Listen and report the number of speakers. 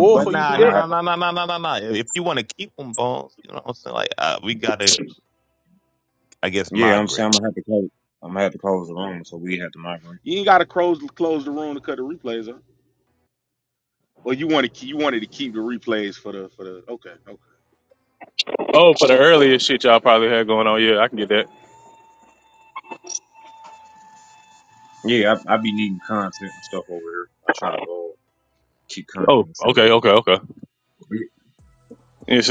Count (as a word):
four